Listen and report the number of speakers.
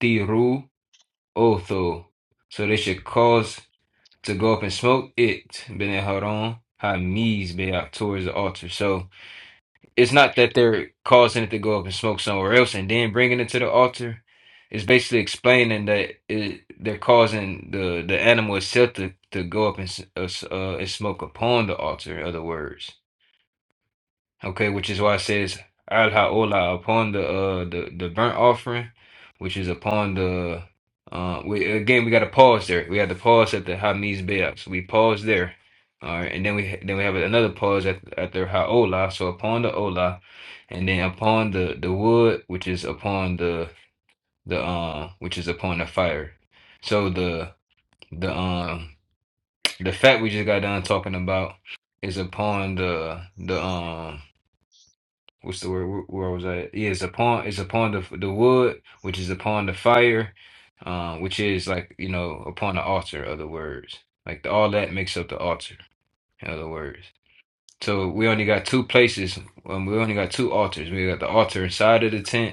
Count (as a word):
one